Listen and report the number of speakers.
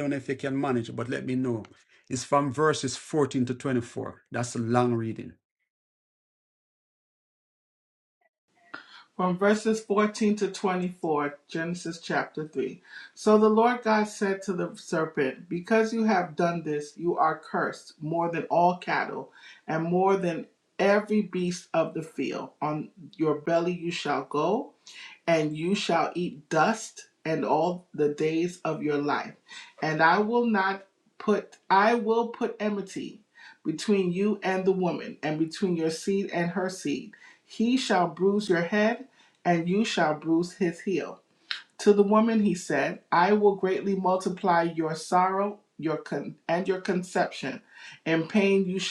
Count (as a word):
two